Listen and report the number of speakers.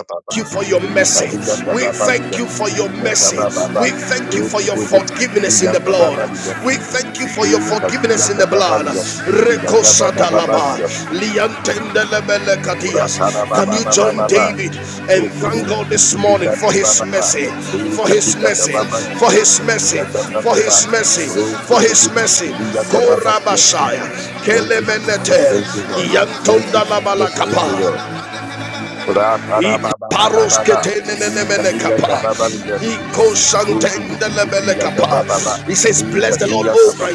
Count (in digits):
2